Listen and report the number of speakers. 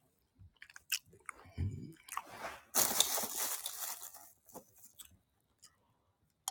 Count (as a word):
zero